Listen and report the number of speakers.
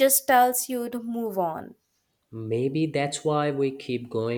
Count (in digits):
2